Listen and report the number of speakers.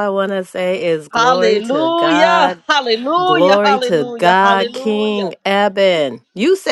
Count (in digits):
2